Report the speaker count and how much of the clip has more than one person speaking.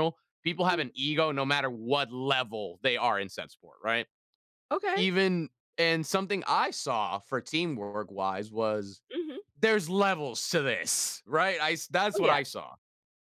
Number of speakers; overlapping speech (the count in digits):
2, about 5%